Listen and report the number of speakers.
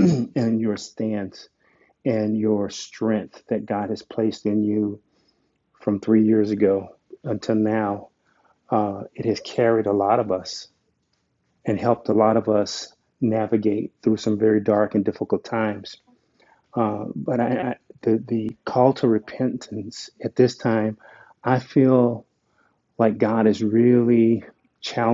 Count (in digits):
1